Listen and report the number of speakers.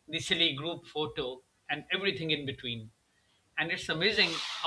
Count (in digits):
1